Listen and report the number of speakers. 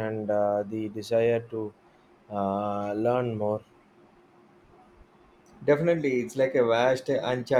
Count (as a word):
two